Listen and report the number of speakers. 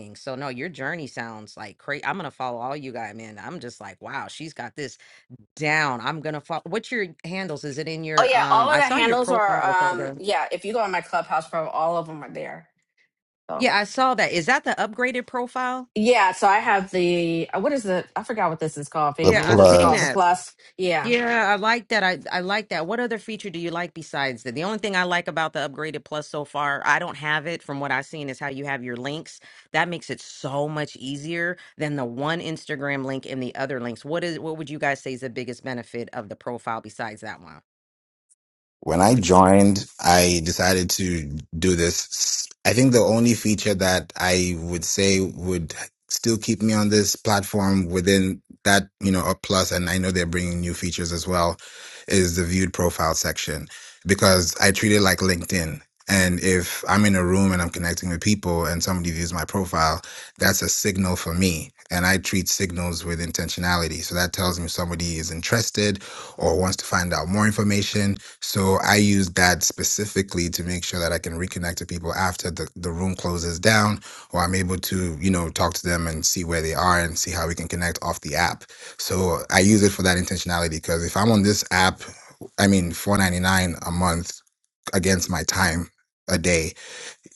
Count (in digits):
3